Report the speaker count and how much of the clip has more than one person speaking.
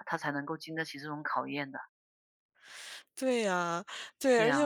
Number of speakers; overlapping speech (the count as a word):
two, about 6%